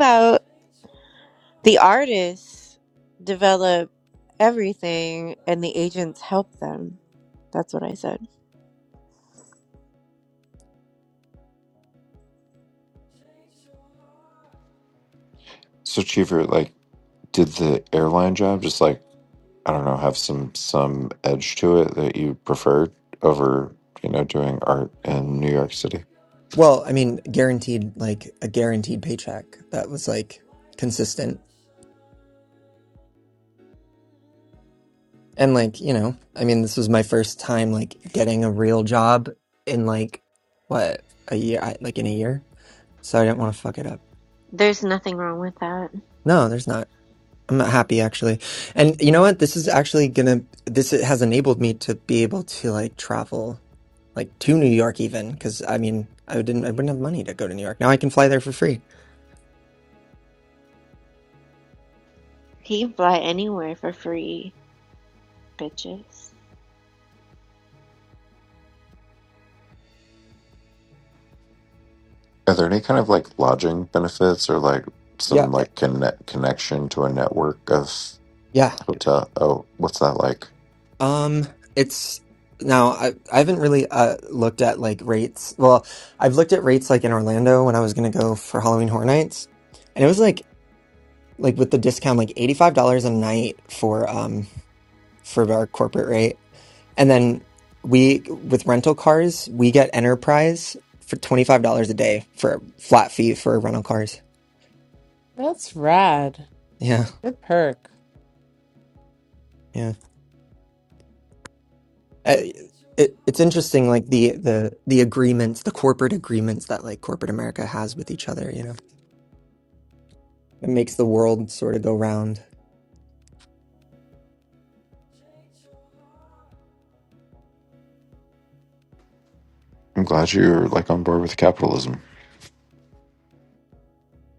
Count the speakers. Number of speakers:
4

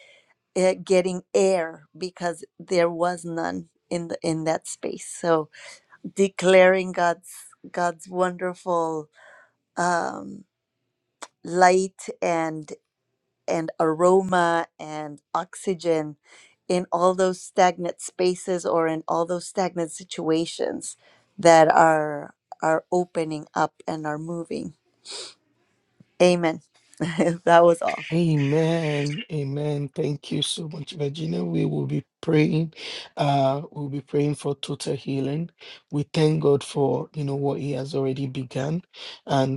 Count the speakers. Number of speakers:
2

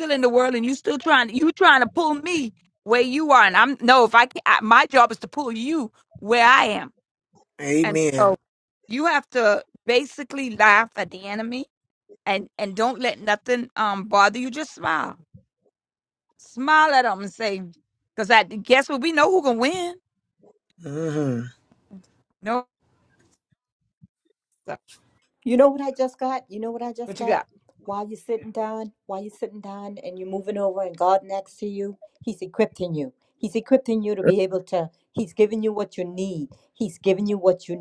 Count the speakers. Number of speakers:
3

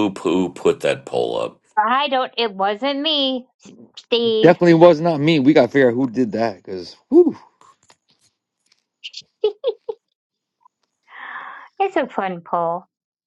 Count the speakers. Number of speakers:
3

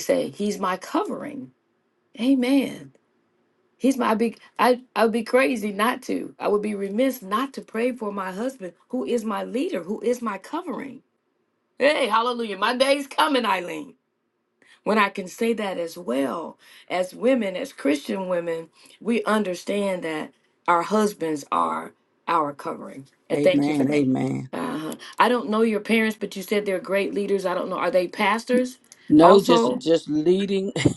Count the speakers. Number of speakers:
2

